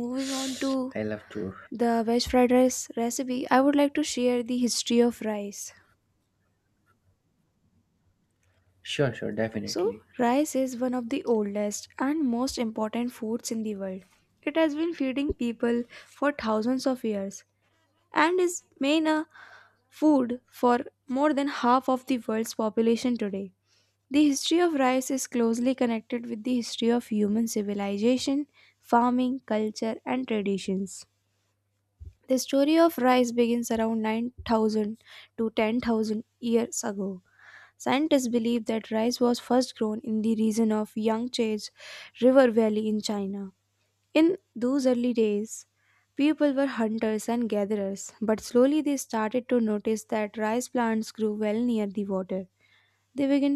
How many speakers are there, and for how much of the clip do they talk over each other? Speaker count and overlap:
2, under 1%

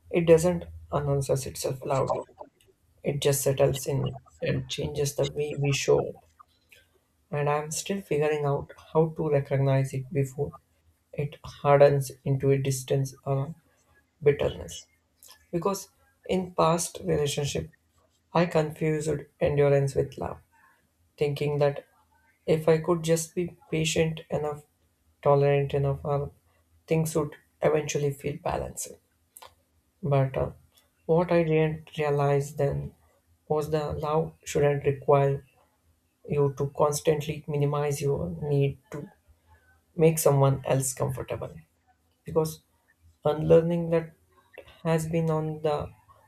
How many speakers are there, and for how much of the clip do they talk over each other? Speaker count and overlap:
1, no overlap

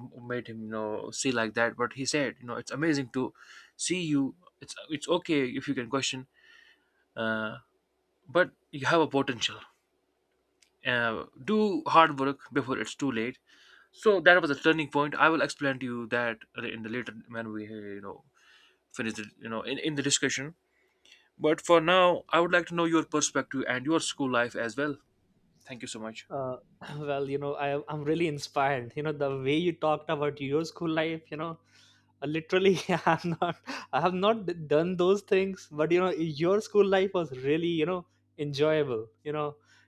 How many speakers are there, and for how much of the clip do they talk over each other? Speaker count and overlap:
2, no overlap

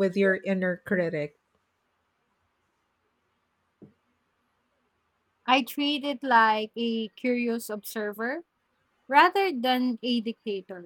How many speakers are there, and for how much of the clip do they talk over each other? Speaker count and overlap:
2, no overlap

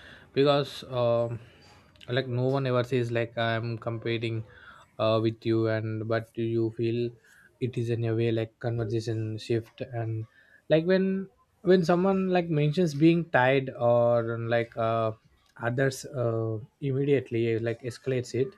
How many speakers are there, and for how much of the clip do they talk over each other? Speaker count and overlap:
1, no overlap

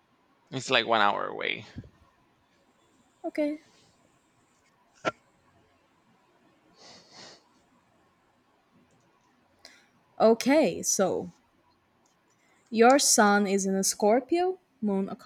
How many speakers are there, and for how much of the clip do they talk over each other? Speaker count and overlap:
2, no overlap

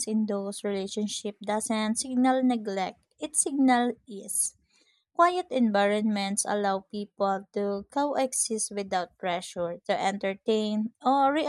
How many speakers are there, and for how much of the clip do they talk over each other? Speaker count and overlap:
1, no overlap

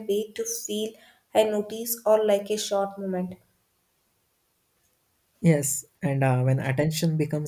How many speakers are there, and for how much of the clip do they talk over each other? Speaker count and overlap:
2, no overlap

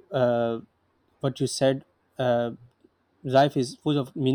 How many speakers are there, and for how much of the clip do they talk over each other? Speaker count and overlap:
1, no overlap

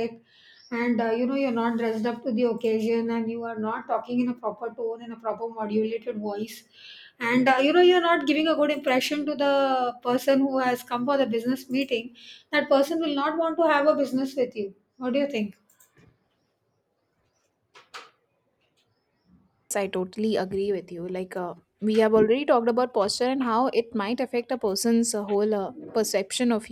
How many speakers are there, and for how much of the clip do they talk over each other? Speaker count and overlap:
2, no overlap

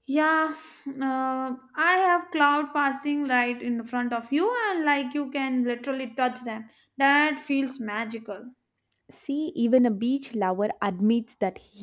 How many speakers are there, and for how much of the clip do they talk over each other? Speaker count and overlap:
2, no overlap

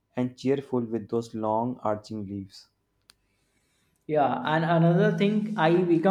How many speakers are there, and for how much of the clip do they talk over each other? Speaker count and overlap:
2, no overlap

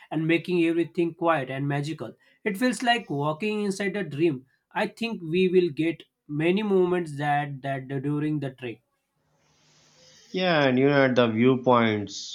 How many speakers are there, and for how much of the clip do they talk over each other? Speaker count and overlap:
2, no overlap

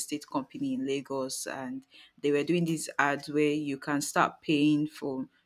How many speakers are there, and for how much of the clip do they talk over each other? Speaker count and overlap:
1, no overlap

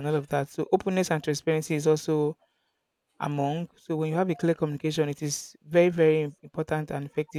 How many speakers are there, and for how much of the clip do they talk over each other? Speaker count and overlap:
1, no overlap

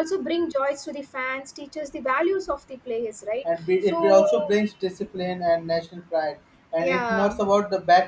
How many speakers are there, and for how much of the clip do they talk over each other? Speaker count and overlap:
2, about 15%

